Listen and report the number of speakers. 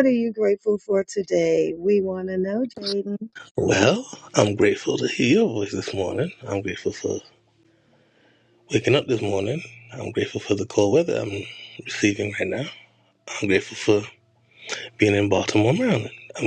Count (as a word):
two